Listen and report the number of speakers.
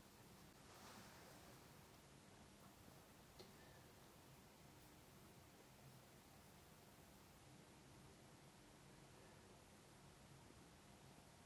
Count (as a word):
zero